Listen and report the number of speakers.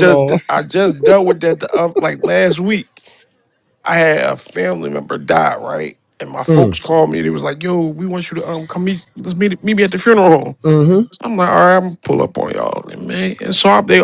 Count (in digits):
2